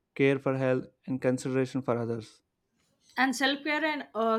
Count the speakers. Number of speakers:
two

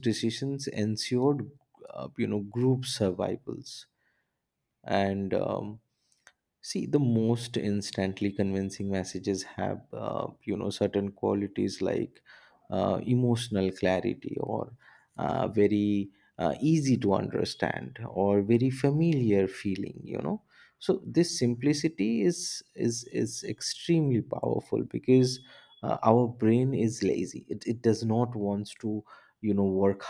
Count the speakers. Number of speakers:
one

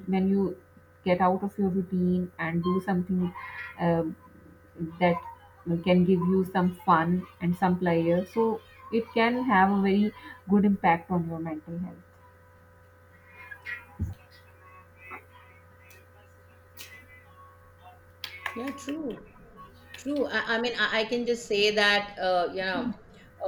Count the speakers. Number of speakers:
two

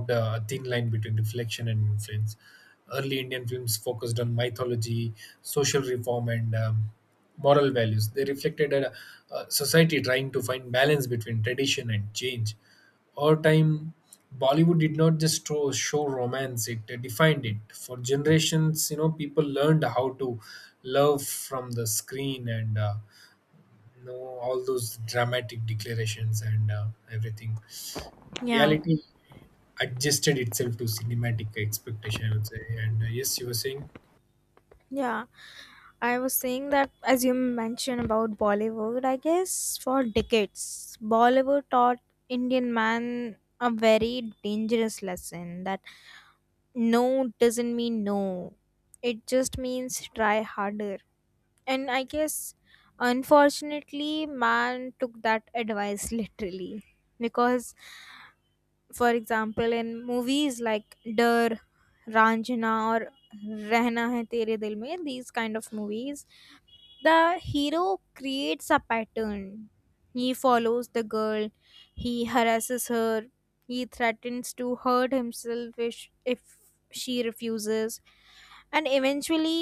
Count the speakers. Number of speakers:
two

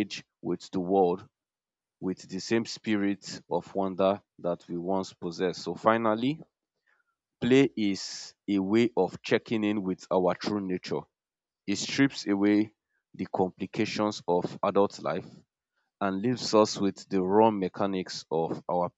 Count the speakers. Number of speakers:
one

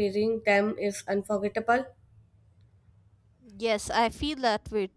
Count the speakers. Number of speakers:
two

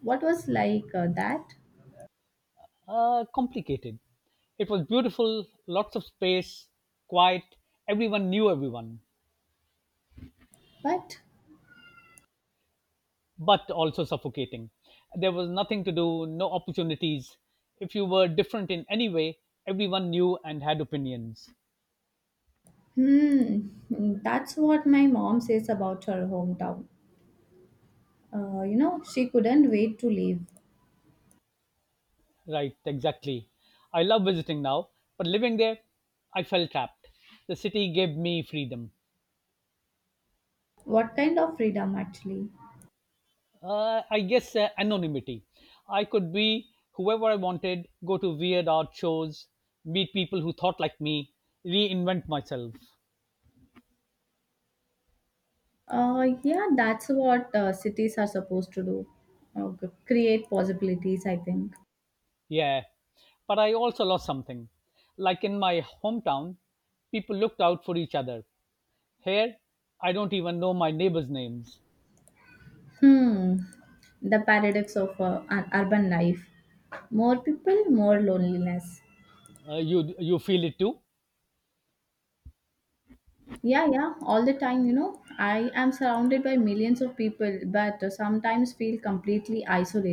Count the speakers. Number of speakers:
two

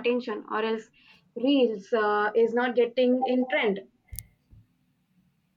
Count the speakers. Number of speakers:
one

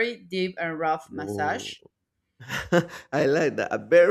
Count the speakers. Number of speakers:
two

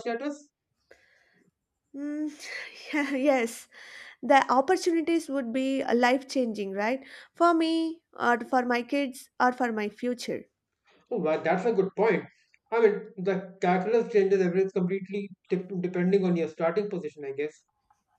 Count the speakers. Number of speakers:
two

